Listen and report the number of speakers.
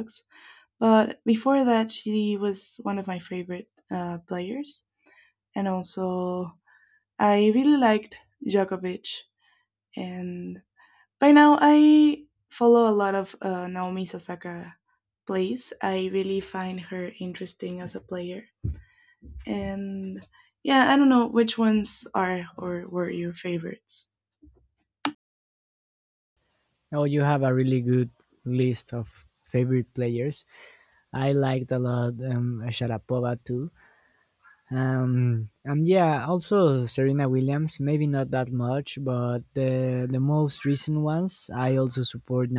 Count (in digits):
2